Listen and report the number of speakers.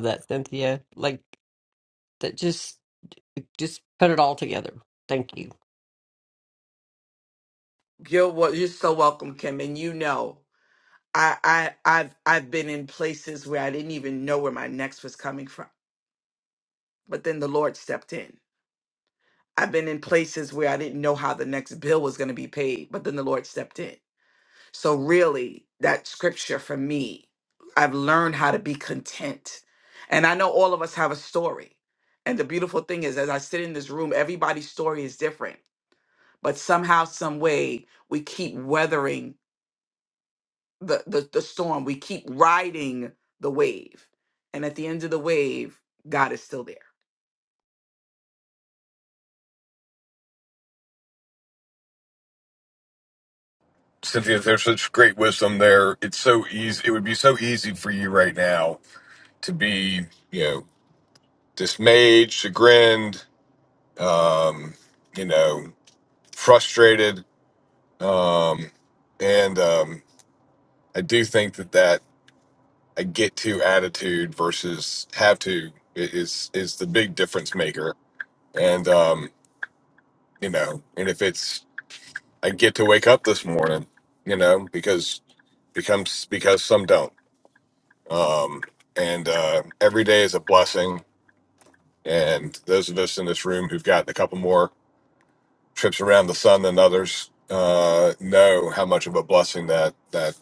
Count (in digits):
3